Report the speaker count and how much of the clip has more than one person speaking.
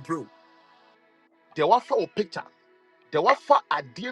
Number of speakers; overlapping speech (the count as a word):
one, no overlap